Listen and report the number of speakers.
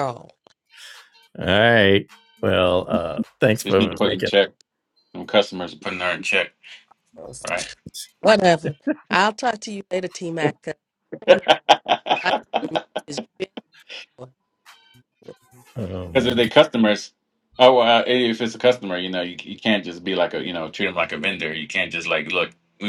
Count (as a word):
three